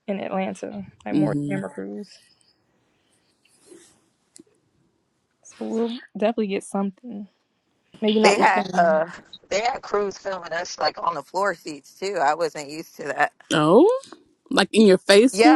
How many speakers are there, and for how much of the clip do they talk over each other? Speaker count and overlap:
3, about 8%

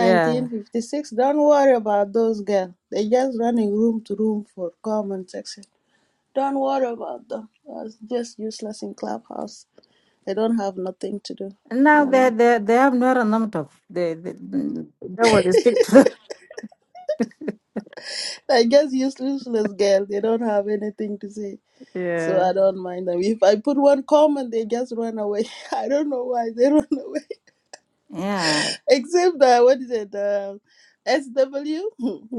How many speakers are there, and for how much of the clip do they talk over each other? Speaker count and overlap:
2, about 3%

